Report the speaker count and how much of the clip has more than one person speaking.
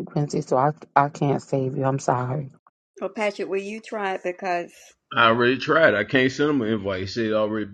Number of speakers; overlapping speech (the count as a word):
three, no overlap